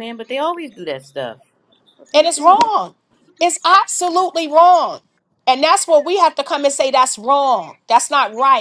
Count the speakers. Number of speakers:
two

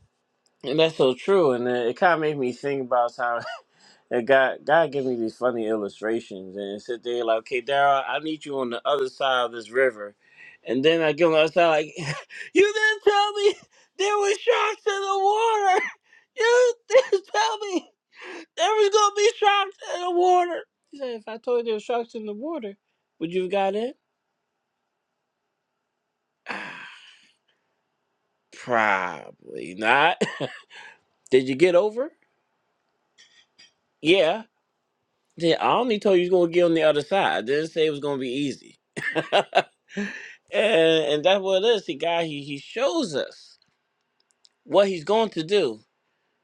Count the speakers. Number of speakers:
one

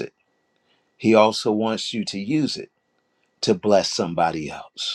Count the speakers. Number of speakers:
one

